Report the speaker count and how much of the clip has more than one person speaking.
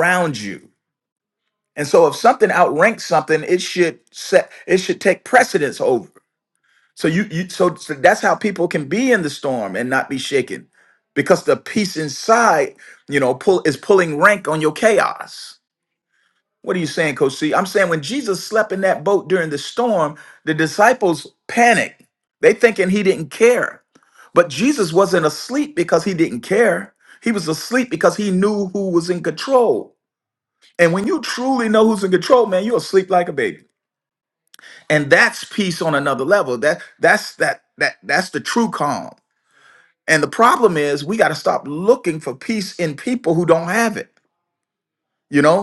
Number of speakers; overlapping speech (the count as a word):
one, no overlap